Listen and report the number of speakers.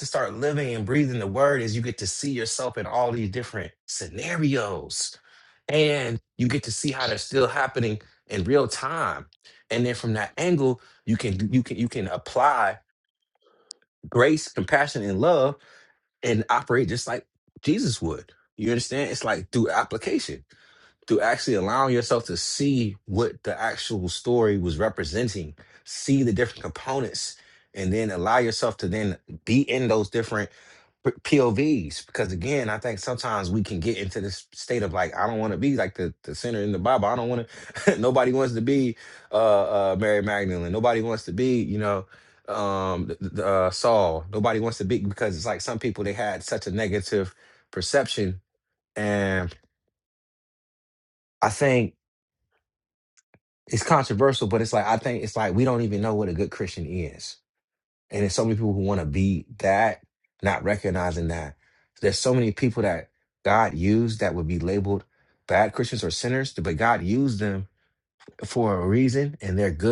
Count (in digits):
1